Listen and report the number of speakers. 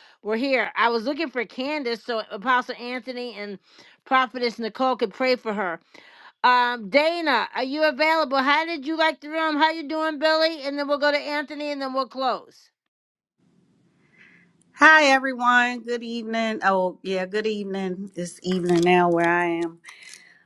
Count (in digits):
2